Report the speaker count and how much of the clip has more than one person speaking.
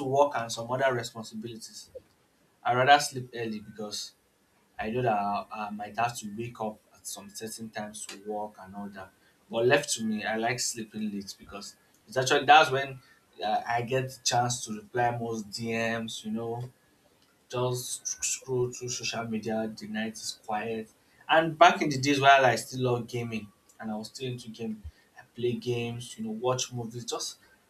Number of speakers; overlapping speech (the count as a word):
one, no overlap